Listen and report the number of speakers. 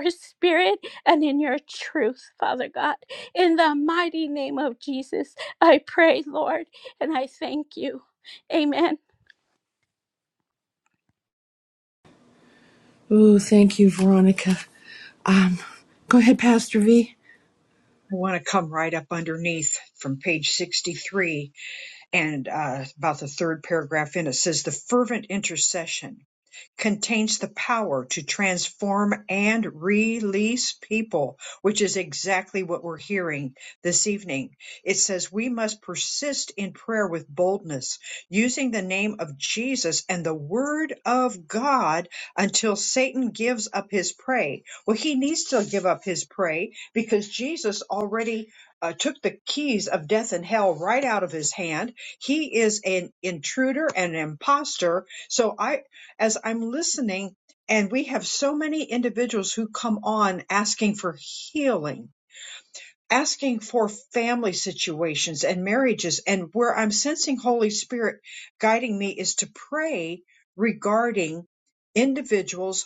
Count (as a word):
three